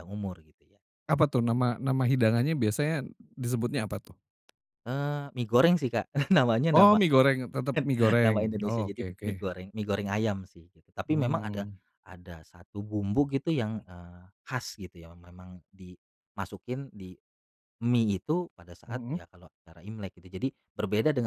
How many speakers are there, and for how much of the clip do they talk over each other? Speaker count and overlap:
2, about 11%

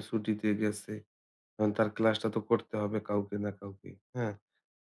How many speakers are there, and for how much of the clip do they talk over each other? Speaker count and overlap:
1, no overlap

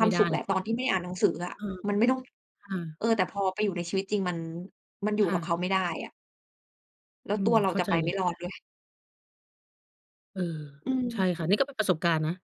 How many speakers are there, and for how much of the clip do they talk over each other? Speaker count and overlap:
2, about 16%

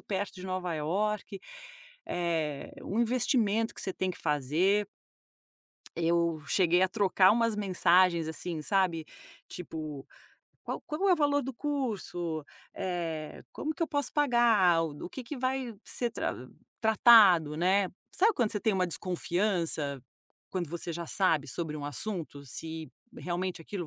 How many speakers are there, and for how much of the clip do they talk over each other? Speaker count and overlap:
1, no overlap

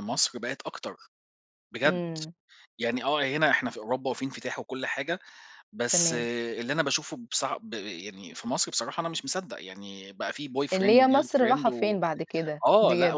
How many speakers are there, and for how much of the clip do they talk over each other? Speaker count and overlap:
2, about 17%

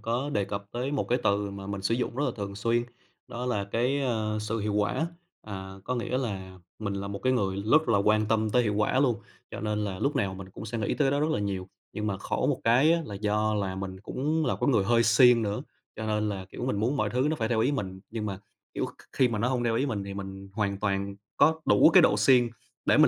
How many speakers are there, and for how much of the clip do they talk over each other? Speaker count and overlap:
1, no overlap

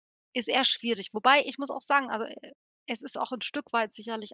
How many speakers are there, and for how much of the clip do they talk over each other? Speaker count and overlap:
1, no overlap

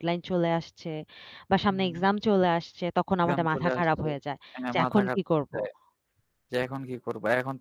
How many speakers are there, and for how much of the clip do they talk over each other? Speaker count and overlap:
2, about 23%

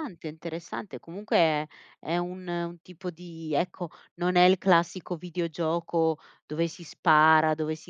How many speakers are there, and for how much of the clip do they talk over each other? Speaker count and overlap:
1, no overlap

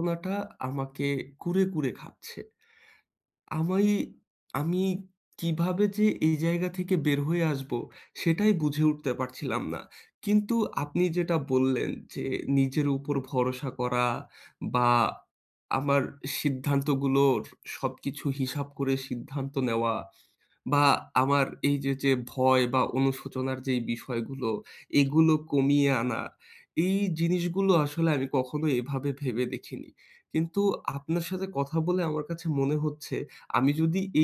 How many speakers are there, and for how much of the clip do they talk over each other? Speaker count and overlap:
1, no overlap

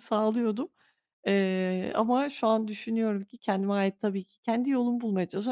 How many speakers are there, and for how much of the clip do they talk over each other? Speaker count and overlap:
1, no overlap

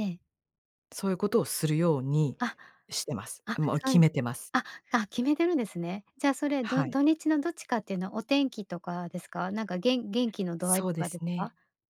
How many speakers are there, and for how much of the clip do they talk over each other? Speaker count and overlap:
2, about 13%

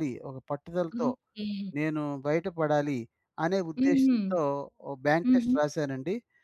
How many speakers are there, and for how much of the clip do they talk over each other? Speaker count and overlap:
2, about 14%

